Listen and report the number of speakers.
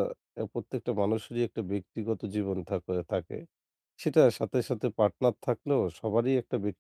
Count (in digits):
1